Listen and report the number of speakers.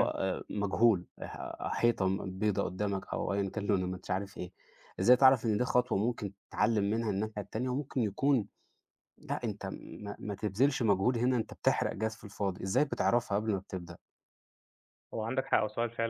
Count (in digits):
2